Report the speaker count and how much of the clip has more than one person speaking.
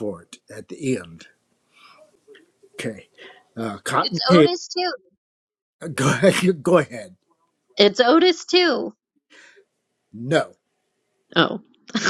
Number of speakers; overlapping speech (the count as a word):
two, about 4%